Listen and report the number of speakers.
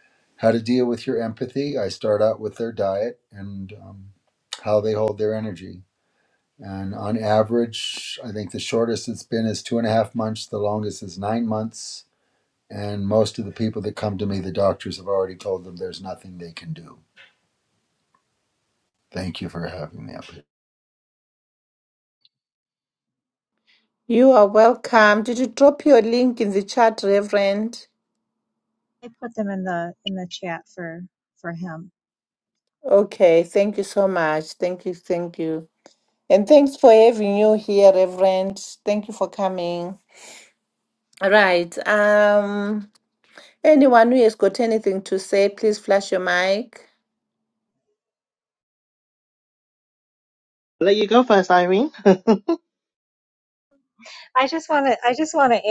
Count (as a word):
four